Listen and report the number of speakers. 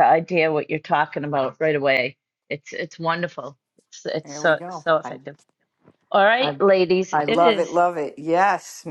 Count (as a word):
two